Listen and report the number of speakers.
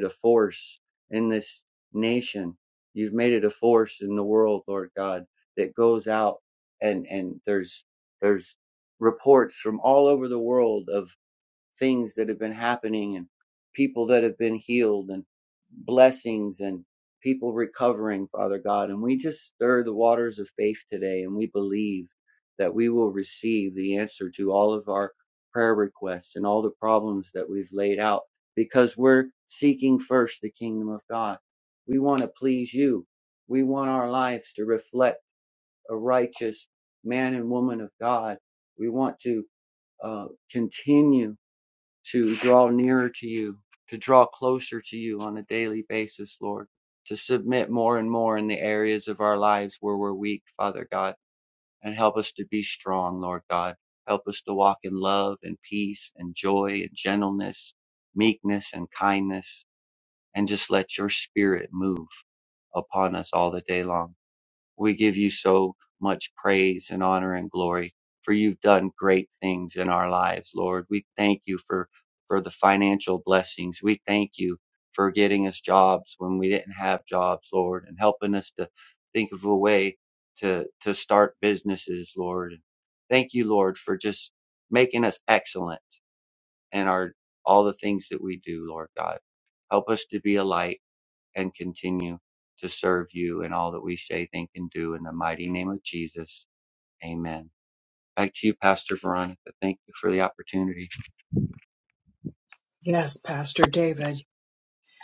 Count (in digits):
2